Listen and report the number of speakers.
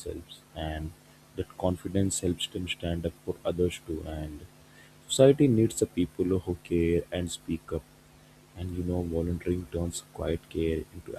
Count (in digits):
1